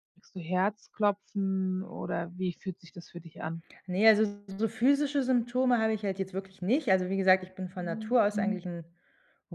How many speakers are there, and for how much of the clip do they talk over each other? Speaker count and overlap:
two, about 8%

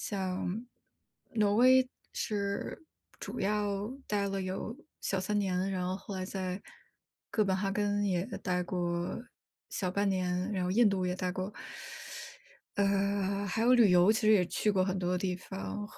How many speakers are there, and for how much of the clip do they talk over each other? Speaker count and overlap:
one, no overlap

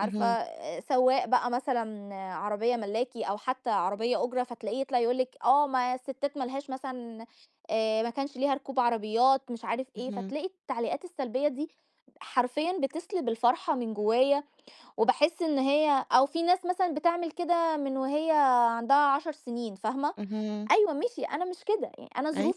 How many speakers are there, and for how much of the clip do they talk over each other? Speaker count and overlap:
two, about 4%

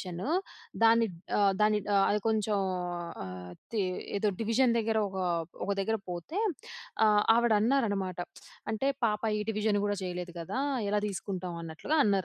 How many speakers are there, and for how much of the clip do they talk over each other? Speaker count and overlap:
one, no overlap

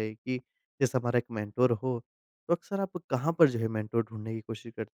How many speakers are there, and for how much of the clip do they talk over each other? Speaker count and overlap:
one, no overlap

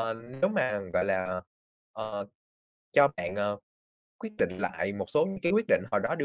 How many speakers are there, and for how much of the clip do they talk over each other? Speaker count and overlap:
one, no overlap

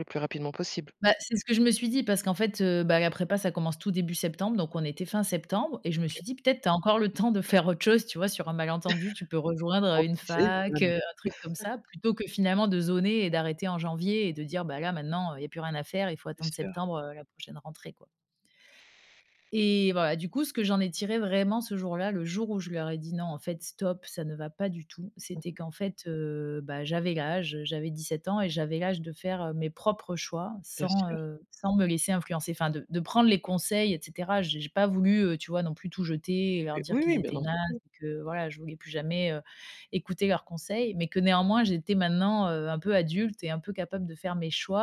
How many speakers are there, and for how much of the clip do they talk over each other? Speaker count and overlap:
two, about 6%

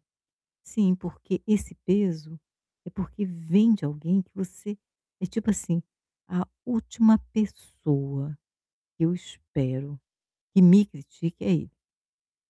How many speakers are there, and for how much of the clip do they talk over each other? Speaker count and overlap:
one, no overlap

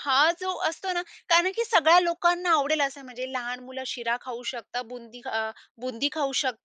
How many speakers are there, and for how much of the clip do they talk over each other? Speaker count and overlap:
one, no overlap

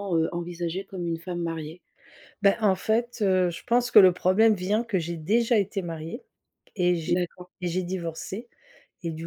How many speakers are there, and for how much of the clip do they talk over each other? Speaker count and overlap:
two, about 1%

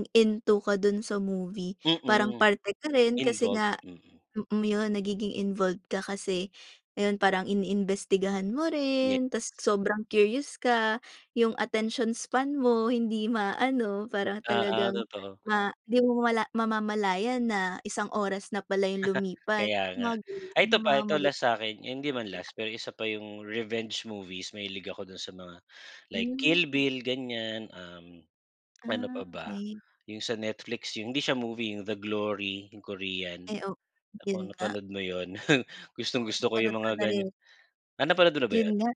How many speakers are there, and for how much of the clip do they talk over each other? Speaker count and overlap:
two, about 16%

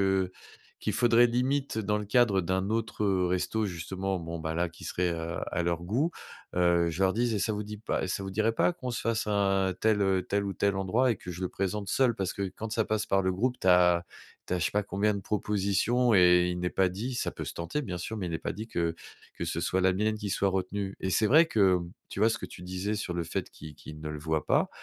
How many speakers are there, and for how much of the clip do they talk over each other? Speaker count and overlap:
one, no overlap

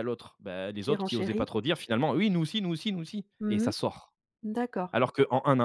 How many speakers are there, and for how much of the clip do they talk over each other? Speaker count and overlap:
two, about 17%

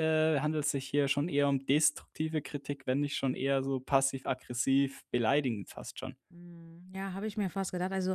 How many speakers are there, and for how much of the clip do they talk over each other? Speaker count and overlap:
two, no overlap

